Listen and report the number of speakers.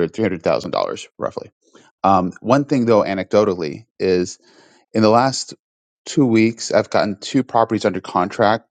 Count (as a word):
one